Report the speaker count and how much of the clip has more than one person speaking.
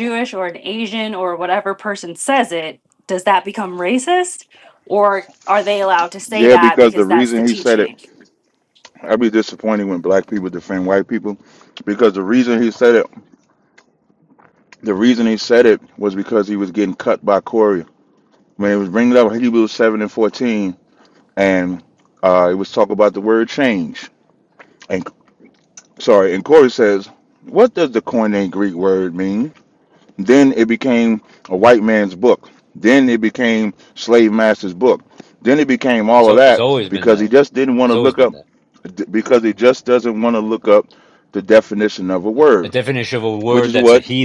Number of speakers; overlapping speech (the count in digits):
3, about 9%